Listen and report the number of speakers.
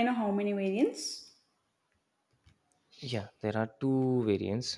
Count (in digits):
2